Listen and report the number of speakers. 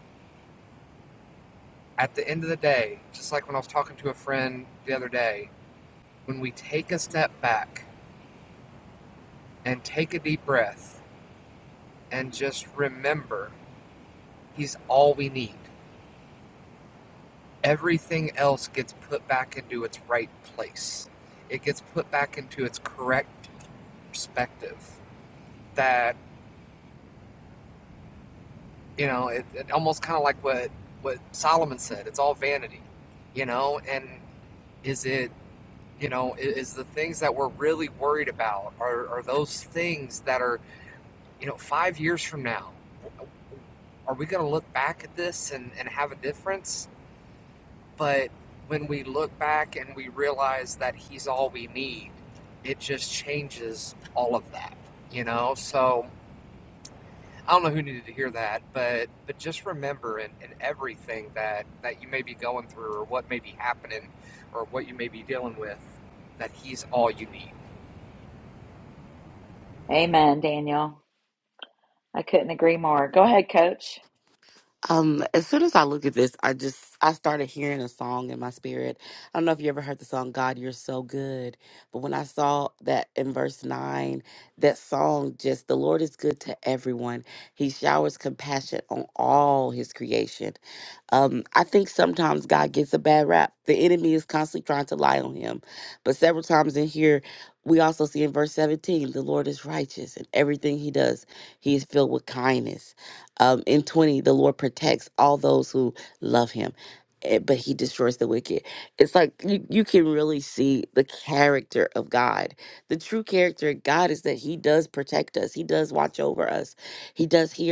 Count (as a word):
three